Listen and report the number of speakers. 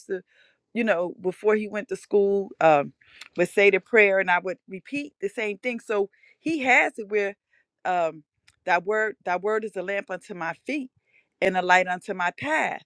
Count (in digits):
1